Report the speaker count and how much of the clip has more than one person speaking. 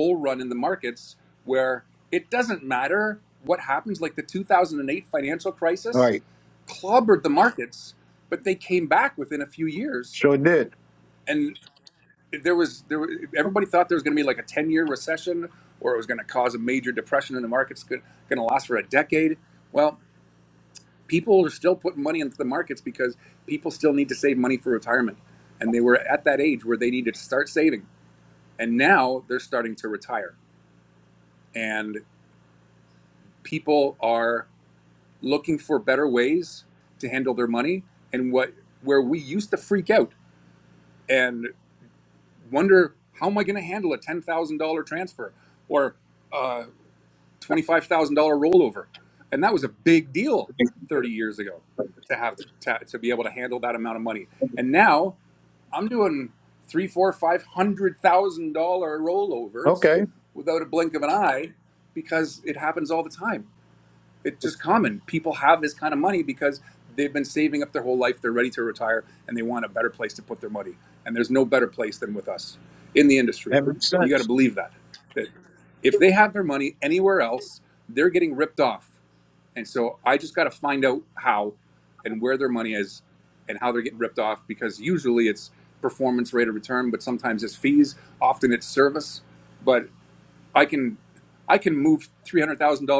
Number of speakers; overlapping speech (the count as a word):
two, under 1%